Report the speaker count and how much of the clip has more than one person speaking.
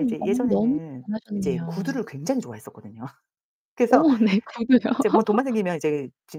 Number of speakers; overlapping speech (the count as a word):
two, about 29%